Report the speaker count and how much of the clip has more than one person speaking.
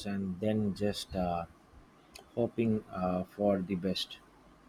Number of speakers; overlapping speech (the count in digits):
1, no overlap